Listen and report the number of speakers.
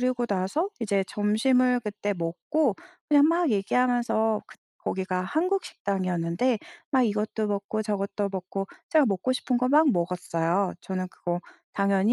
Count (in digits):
1